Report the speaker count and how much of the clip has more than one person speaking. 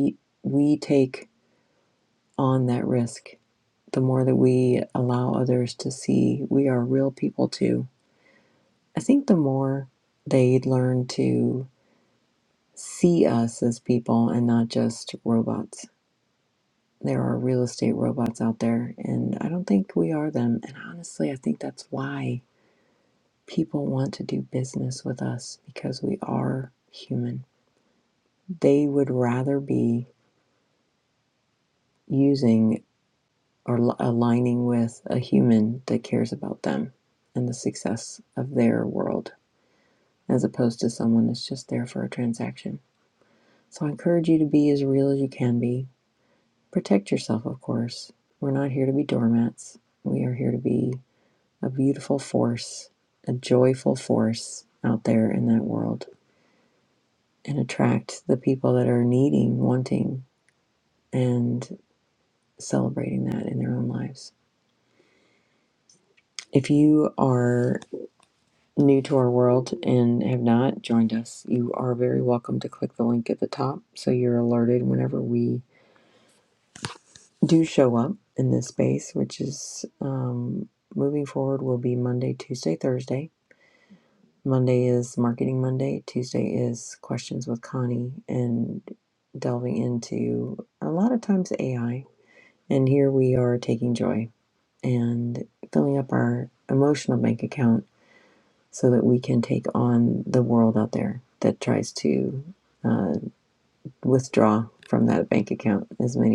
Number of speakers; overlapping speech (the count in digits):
1, no overlap